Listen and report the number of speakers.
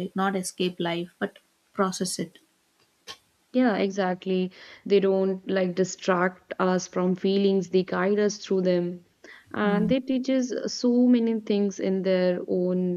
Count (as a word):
two